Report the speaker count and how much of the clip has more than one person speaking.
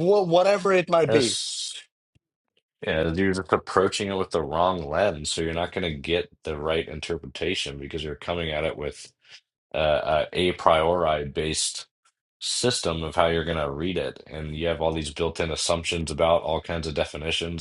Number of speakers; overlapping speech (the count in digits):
2, about 2%